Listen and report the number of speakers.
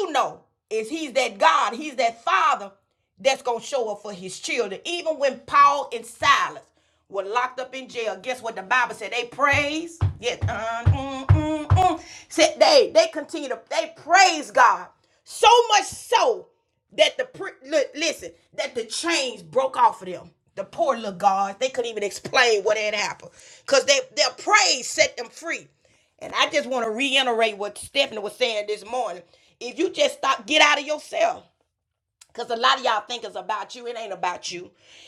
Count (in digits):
1